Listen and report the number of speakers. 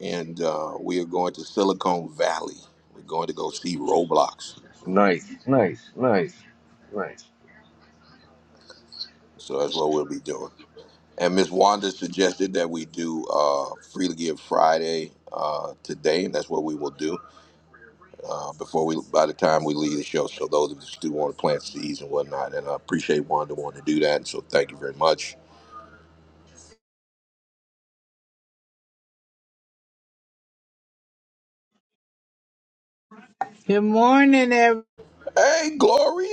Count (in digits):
3